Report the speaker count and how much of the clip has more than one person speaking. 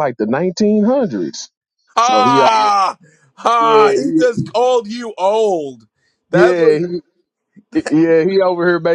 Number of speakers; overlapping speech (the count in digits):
2, about 17%